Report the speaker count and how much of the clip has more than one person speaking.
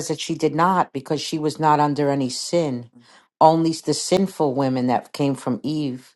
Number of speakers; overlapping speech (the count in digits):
1, no overlap